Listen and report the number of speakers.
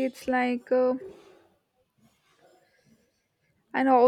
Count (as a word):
one